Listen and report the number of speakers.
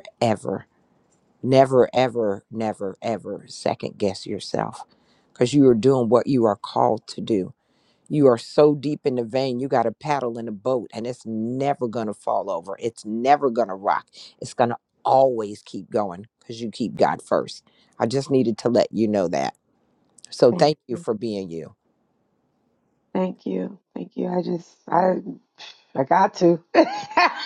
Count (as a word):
two